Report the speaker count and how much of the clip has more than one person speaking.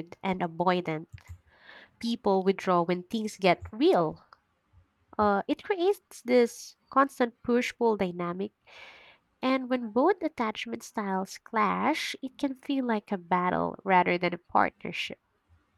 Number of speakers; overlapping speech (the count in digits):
1, no overlap